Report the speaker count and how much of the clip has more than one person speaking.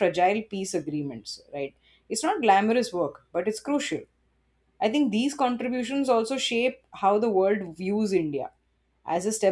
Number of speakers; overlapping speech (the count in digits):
1, no overlap